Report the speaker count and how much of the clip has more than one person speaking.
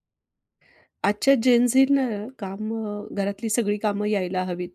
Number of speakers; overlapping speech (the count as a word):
one, no overlap